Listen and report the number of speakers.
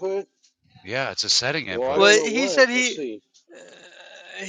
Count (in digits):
3